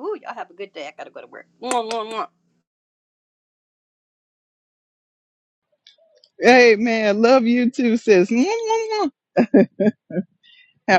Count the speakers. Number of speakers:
two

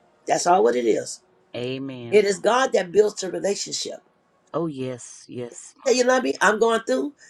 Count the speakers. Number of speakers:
two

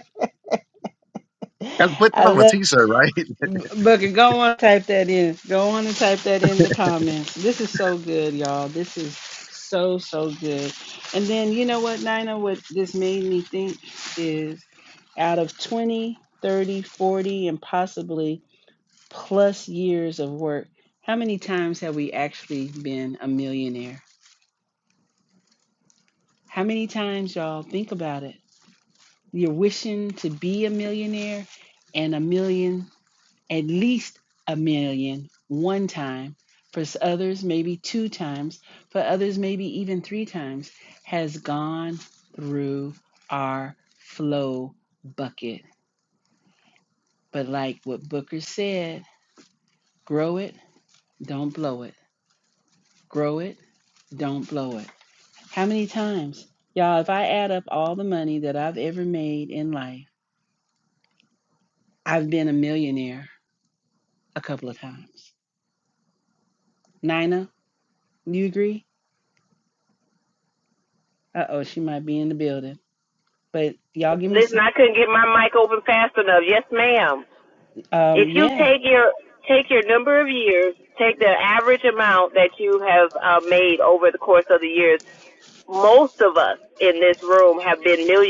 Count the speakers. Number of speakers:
three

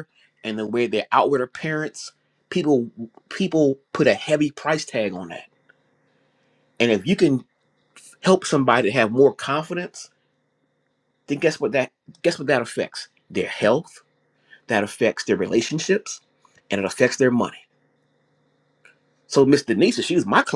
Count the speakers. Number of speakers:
one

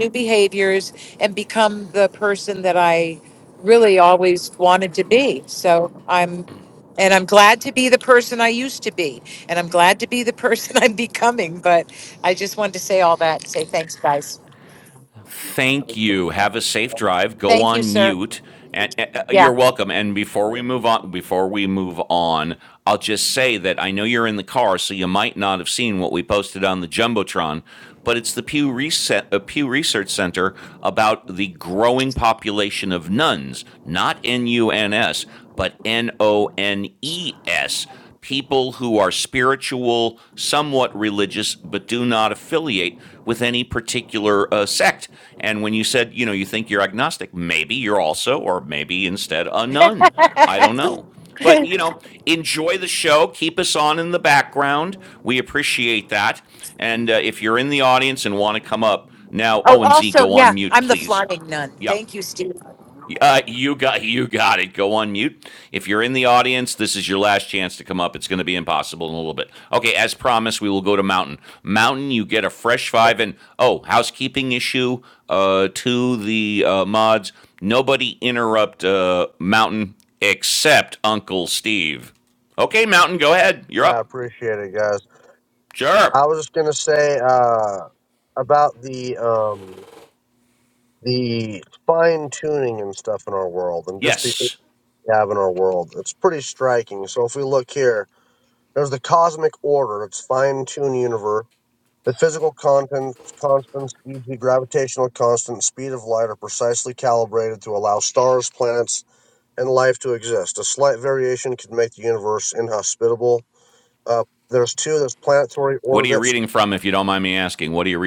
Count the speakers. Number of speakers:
three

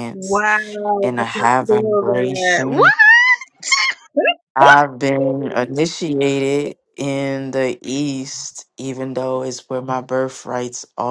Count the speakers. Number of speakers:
two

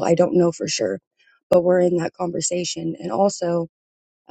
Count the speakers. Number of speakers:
one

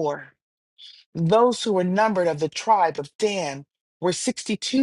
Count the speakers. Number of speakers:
one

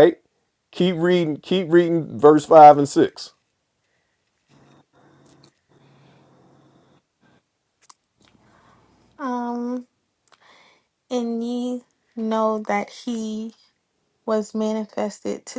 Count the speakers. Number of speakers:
two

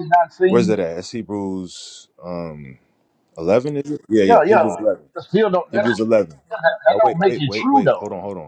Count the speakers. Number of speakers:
two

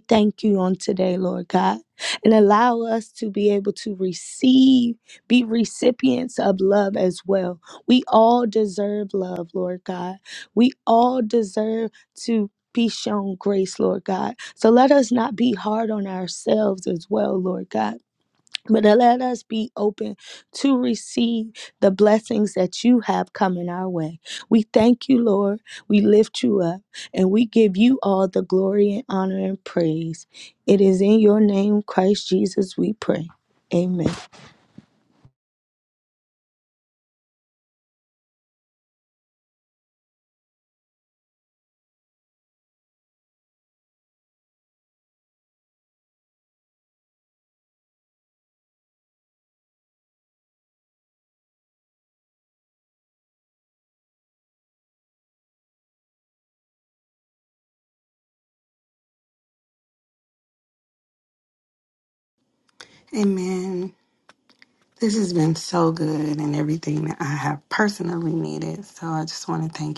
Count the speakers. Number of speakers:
two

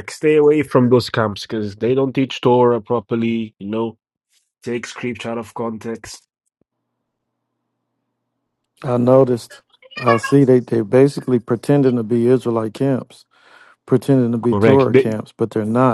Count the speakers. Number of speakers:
two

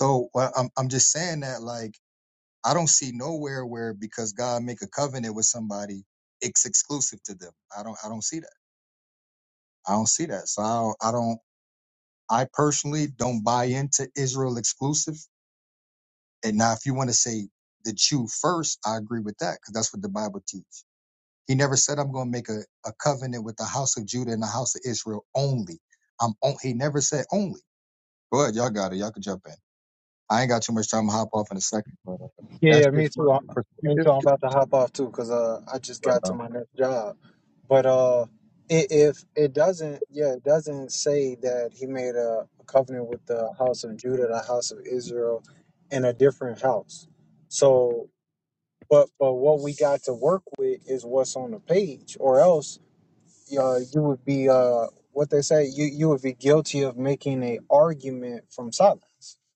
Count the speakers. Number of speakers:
two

